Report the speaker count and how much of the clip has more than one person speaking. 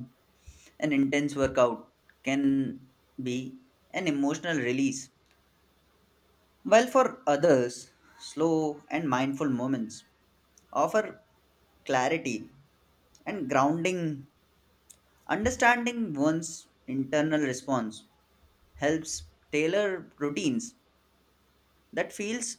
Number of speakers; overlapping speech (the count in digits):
1, no overlap